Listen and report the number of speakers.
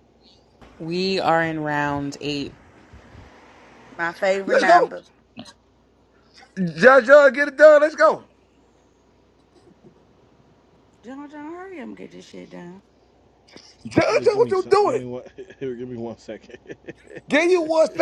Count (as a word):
four